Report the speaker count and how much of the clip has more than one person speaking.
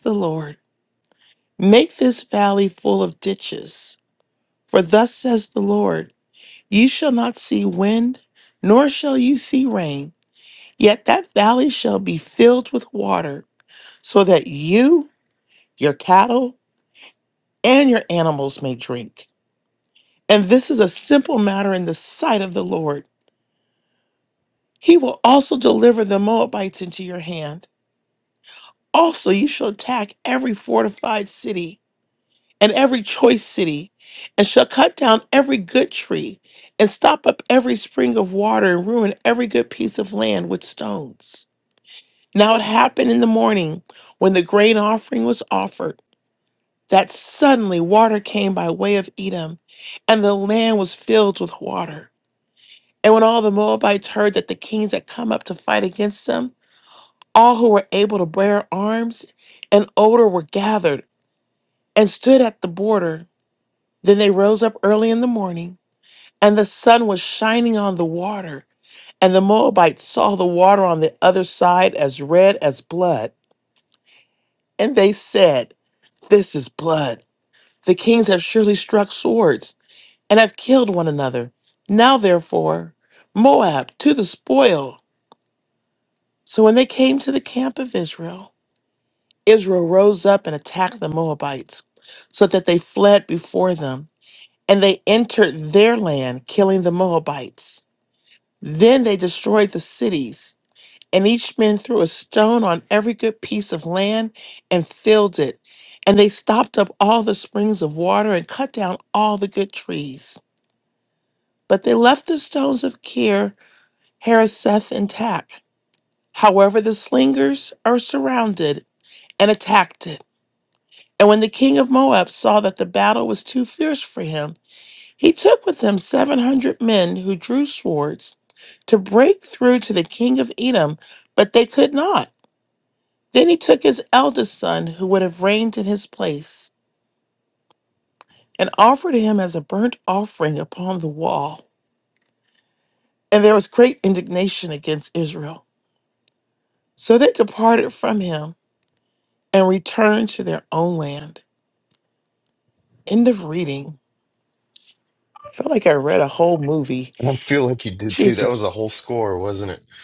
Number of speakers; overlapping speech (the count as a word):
two, under 1%